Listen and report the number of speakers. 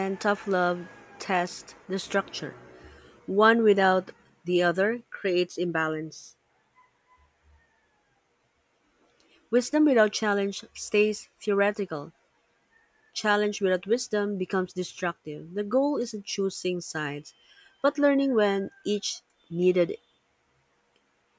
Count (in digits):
1